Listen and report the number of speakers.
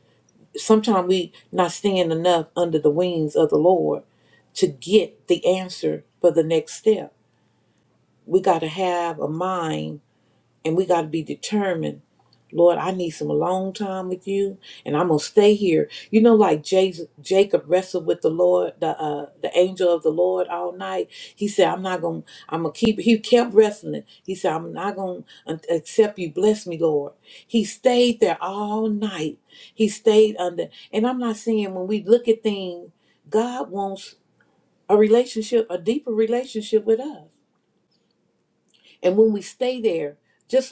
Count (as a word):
one